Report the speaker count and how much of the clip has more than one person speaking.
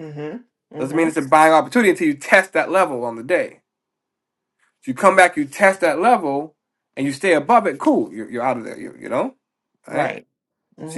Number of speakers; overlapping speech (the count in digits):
2, about 5%